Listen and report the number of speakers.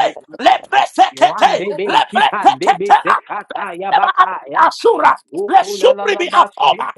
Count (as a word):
two